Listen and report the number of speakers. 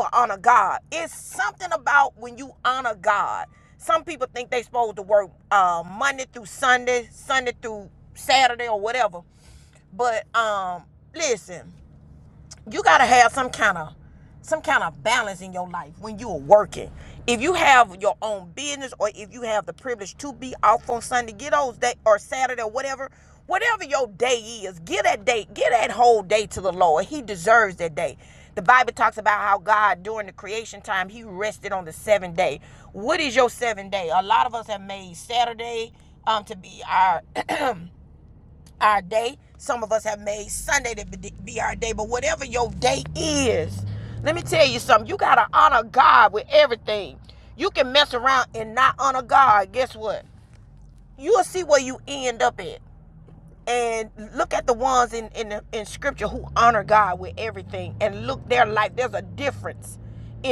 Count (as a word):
one